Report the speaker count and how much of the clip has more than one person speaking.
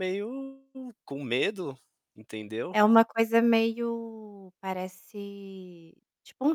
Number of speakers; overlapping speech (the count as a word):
two, under 1%